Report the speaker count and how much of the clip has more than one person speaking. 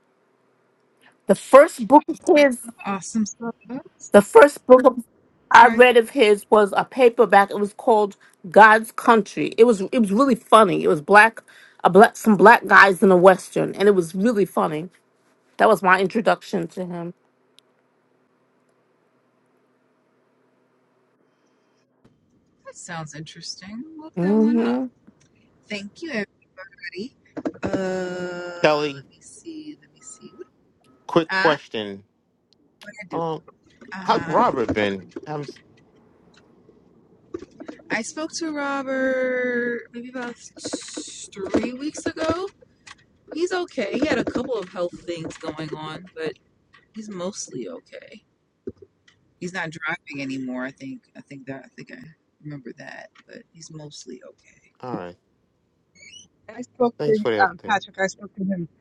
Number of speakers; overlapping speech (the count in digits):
4, about 5%